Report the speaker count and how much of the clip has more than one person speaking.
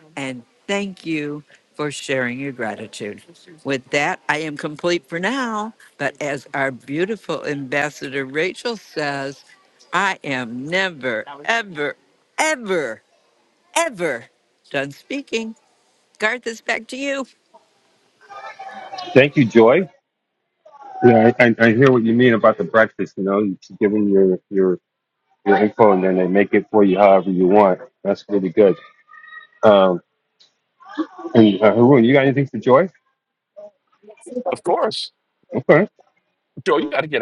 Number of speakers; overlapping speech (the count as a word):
three, no overlap